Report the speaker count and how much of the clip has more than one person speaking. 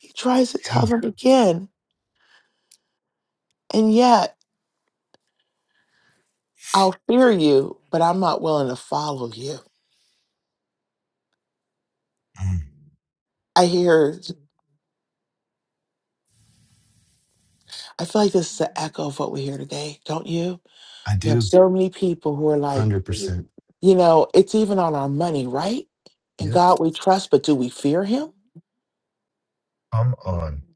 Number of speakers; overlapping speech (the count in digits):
2, about 5%